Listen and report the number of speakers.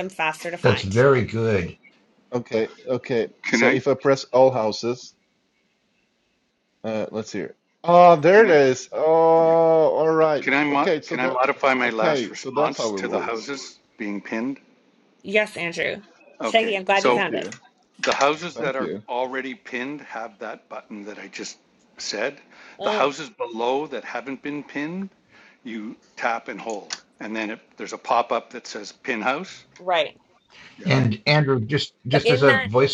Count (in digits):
4